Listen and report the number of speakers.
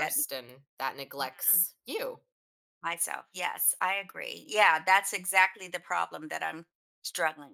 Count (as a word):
two